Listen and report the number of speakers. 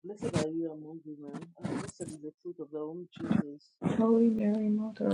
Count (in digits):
2